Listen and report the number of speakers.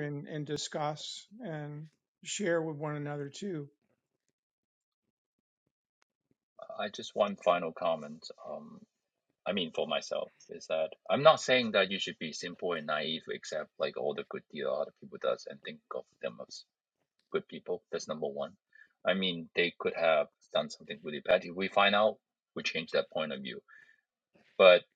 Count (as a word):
two